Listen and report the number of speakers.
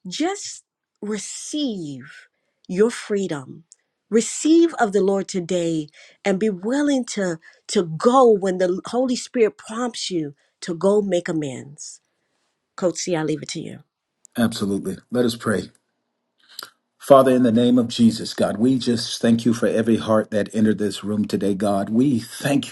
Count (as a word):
two